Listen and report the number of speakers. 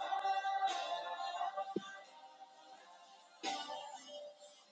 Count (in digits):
0